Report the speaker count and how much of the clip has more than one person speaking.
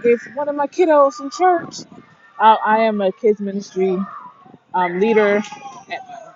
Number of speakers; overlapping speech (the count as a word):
one, no overlap